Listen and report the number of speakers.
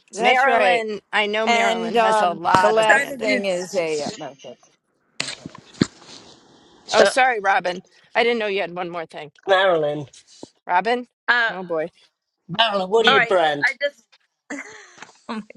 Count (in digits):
4